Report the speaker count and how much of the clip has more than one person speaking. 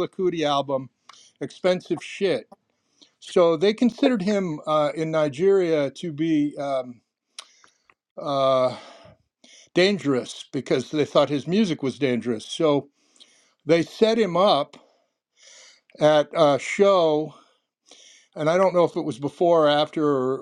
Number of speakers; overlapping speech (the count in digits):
1, no overlap